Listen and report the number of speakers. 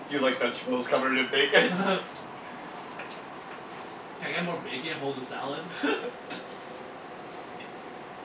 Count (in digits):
2